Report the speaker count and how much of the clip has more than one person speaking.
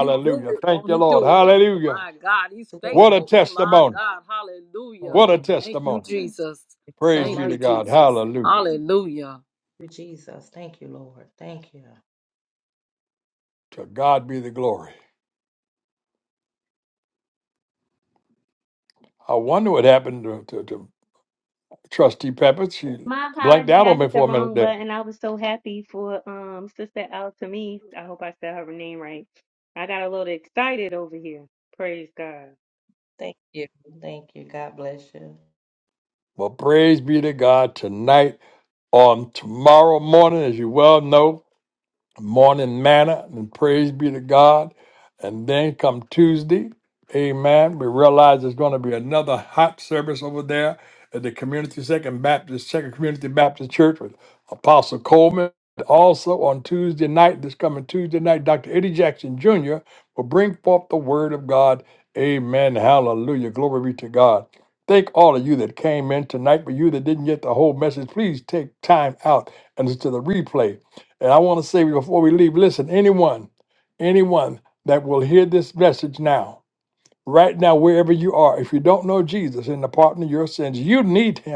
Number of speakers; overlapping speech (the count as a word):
four, about 7%